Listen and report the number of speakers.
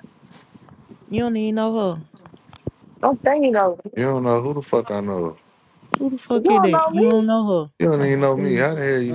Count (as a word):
three